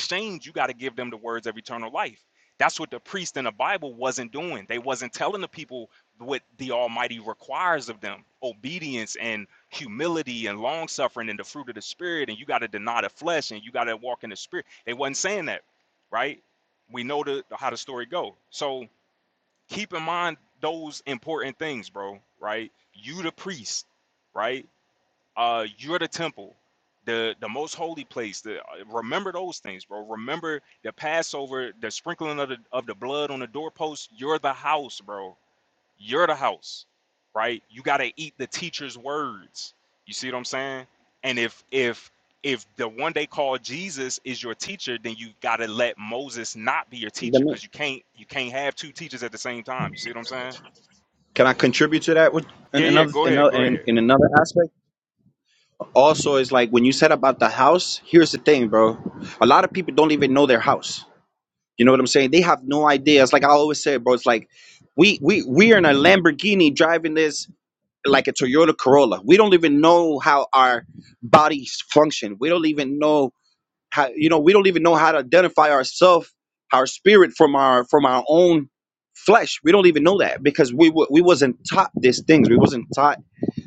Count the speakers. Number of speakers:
2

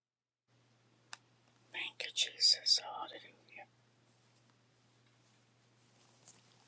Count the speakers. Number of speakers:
0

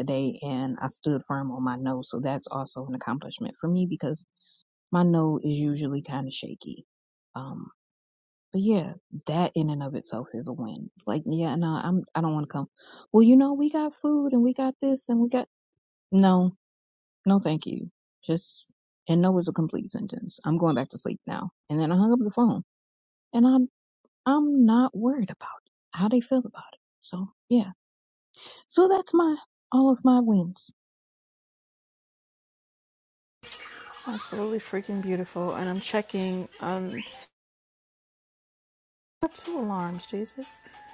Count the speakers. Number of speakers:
2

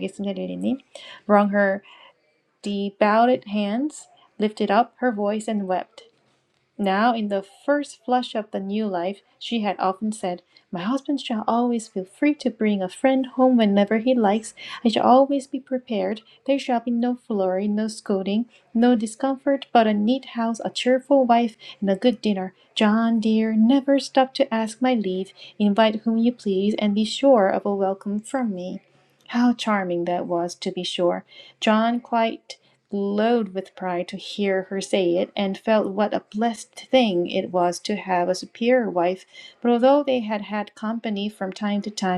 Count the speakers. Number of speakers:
1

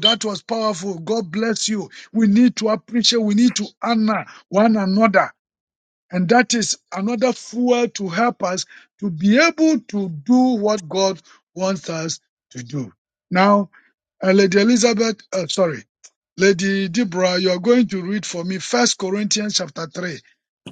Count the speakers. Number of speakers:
1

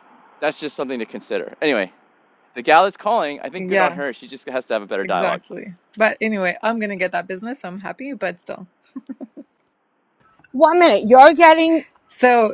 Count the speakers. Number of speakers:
3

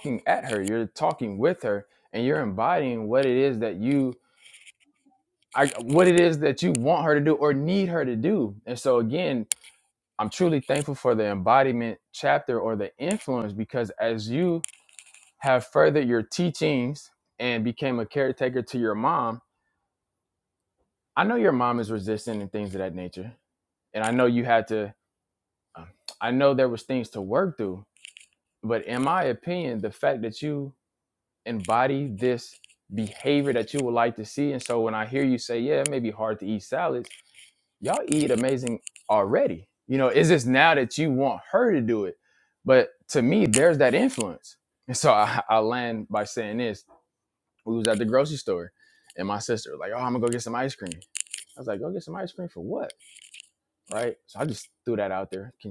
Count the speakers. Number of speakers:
1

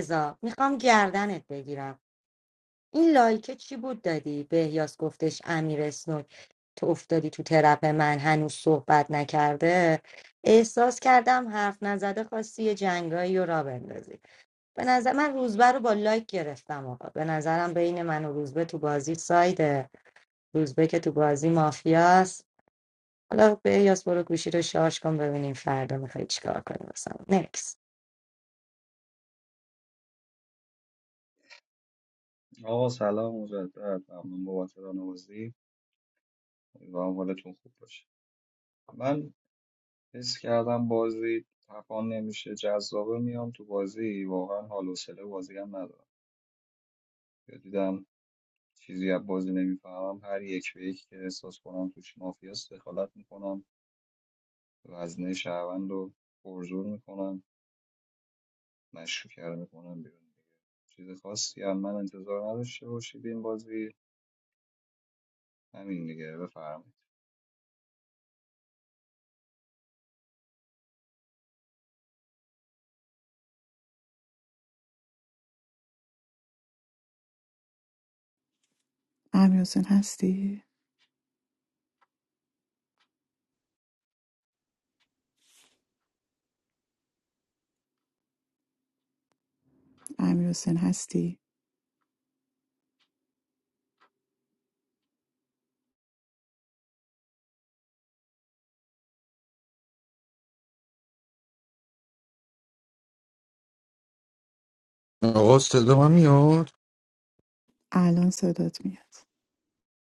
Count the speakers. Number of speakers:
4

